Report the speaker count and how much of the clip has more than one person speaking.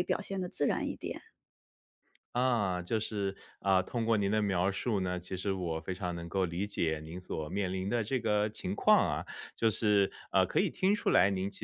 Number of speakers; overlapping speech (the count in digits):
2, no overlap